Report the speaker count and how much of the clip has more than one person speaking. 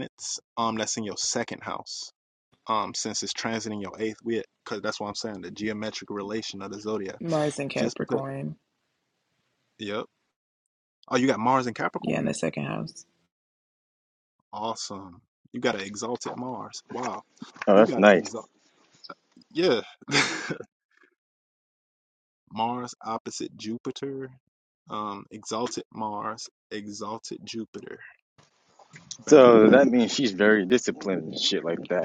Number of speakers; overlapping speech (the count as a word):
three, about 6%